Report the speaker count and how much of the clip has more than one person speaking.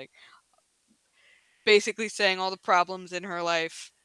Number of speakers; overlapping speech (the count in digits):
1, no overlap